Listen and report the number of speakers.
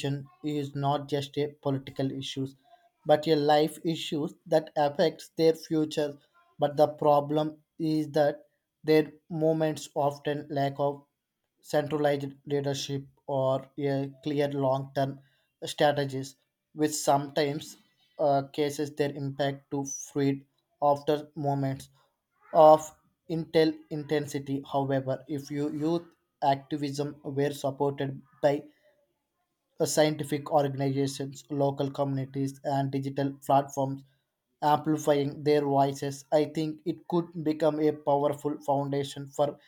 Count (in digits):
1